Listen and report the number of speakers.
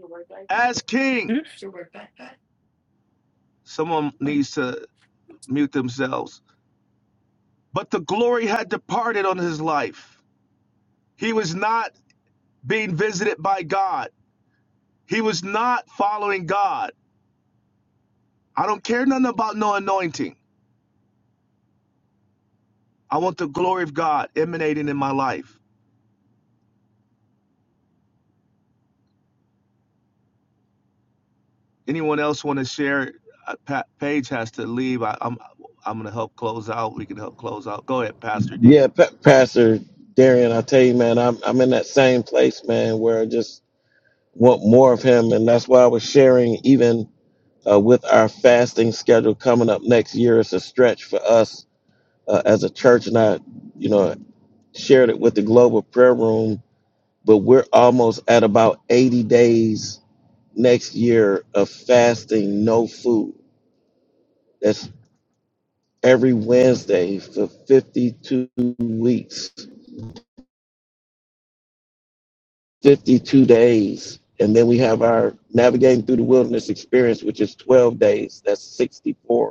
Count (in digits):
3